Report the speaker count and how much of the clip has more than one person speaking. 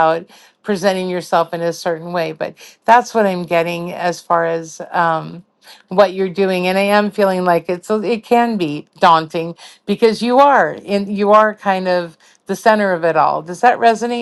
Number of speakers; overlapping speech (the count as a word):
one, no overlap